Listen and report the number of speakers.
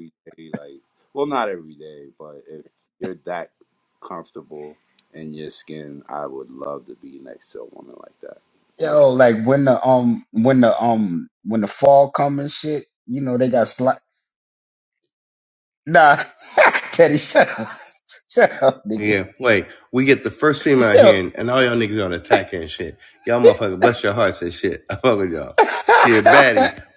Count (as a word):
three